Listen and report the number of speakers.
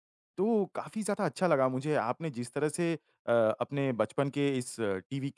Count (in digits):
1